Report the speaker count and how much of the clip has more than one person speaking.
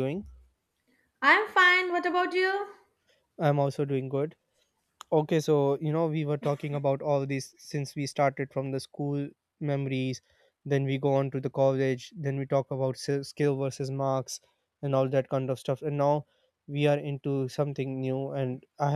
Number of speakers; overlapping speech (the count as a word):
two, no overlap